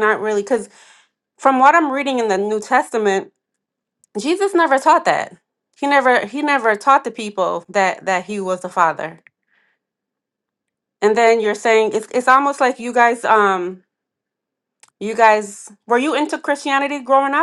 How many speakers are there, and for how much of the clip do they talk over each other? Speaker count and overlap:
one, no overlap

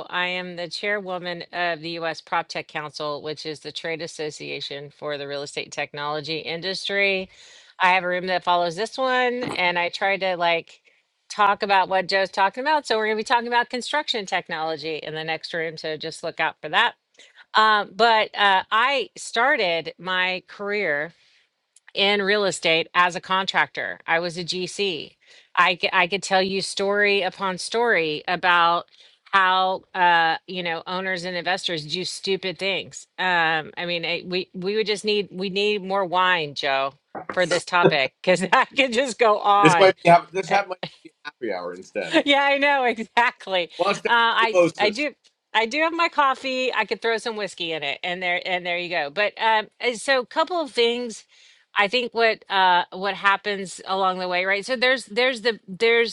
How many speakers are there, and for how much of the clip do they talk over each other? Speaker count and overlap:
two, about 3%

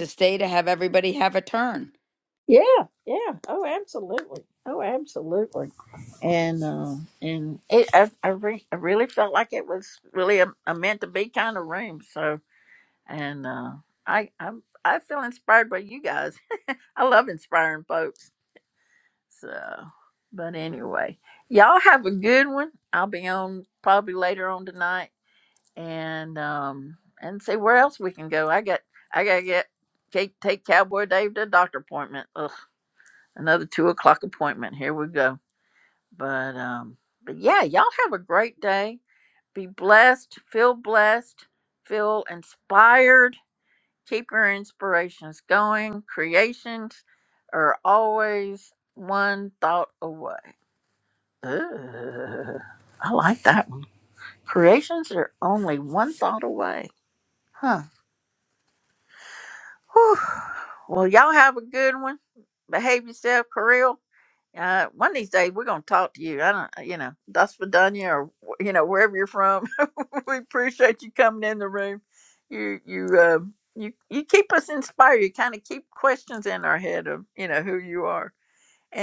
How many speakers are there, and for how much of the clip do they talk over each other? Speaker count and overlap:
two, no overlap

